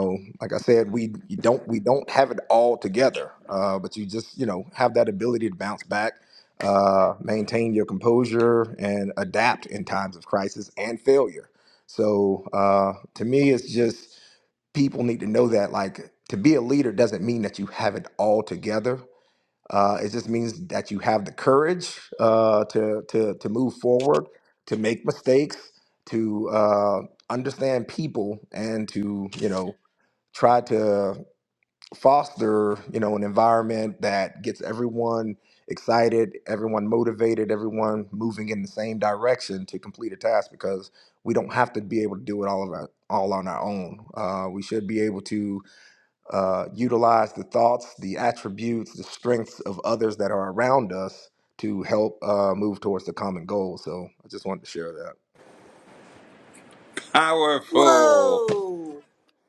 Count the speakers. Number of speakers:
3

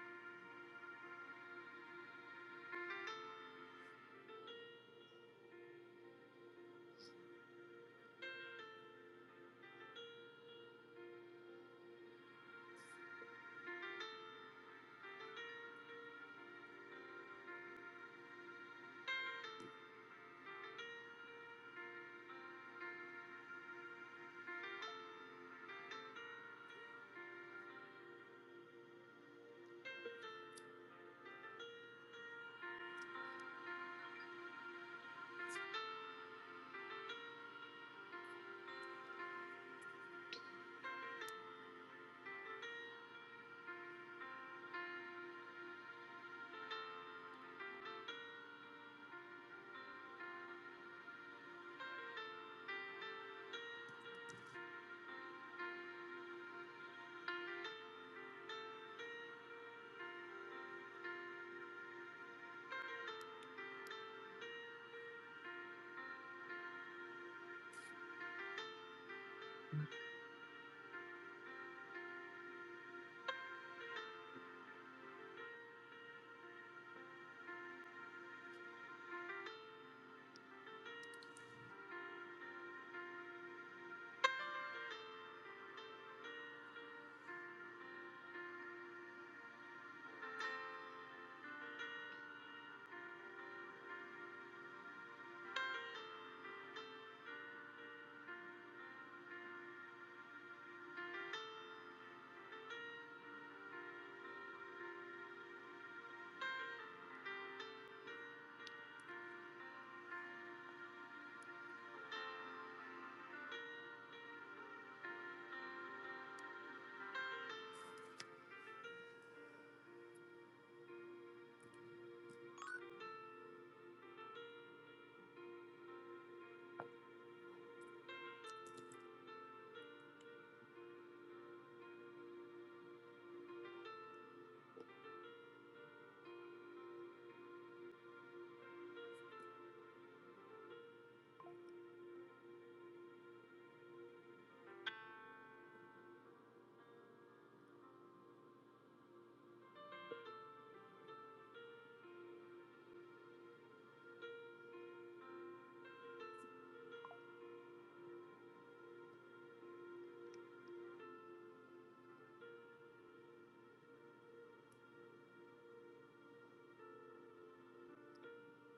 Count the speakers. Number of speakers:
0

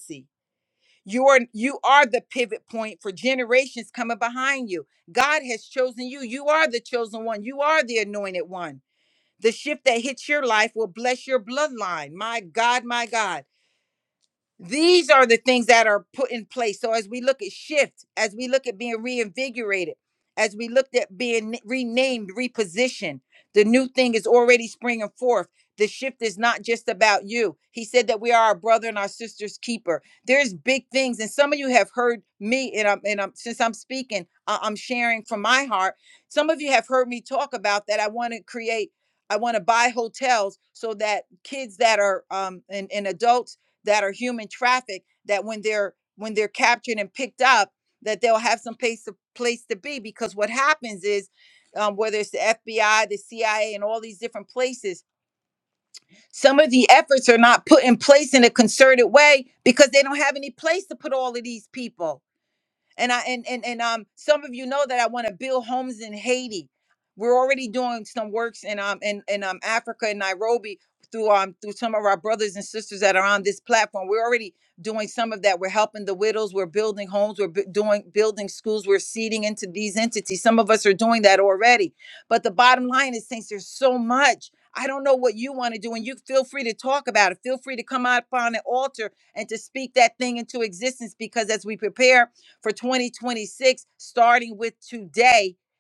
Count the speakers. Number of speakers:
1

